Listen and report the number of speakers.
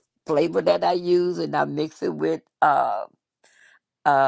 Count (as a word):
one